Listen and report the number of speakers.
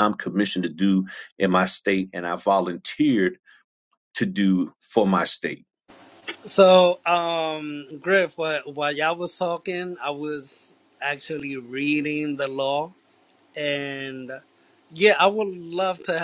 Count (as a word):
two